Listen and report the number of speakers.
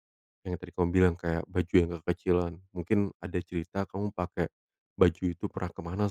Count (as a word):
one